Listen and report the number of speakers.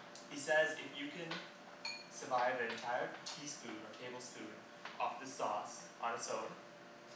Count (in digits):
1